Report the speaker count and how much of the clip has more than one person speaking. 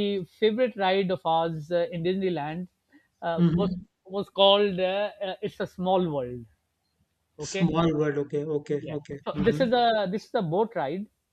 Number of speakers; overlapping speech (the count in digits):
2, about 13%